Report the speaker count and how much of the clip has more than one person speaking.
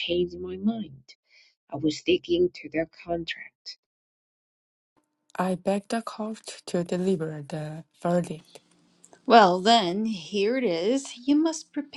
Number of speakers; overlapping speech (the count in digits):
3, no overlap